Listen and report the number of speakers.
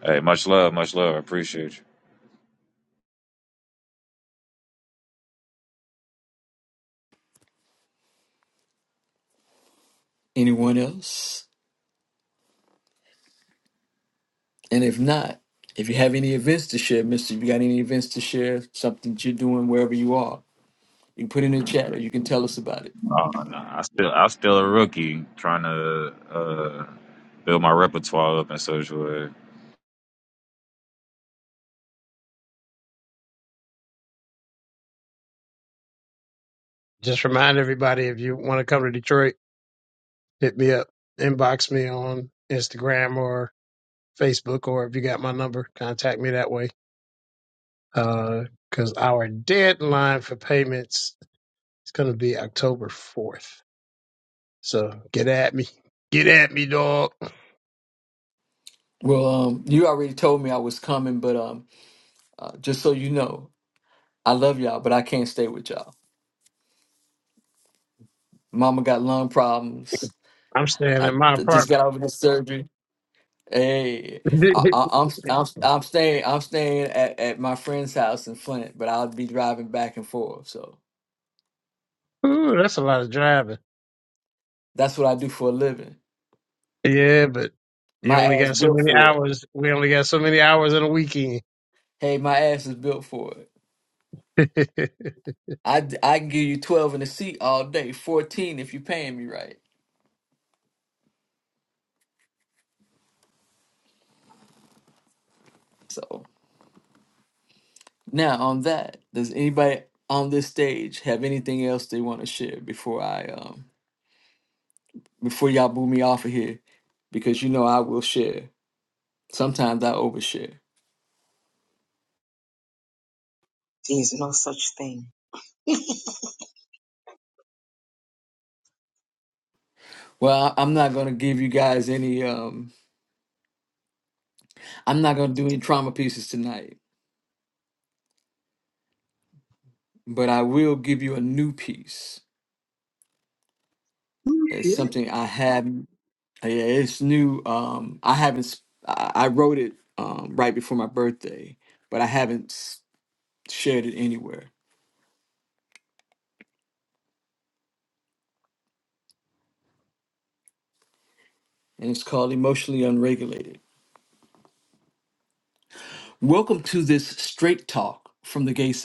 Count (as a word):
four